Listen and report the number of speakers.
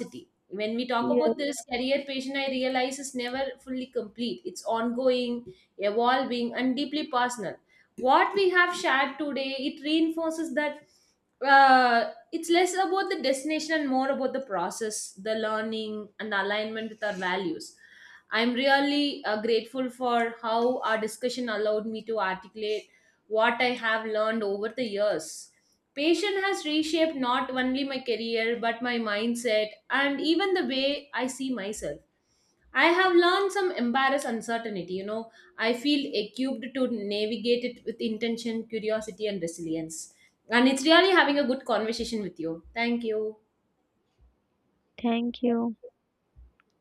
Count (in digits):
2